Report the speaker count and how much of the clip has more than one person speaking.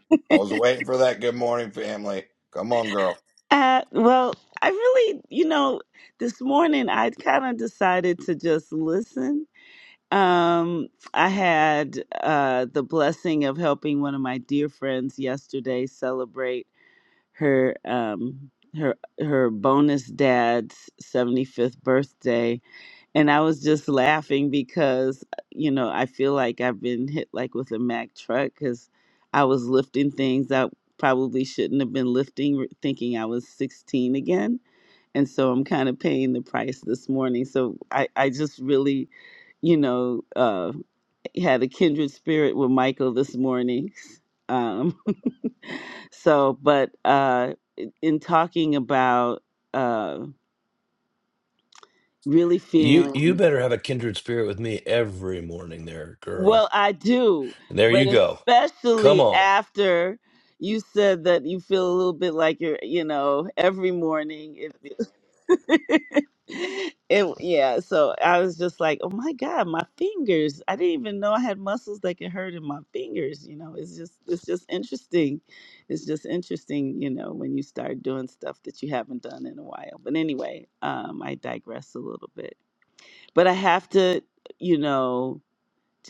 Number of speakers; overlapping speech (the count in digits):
3, about 2%